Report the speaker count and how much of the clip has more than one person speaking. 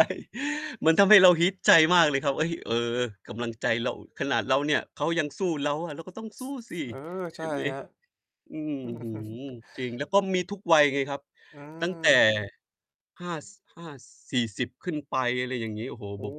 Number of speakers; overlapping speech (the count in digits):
2, about 5%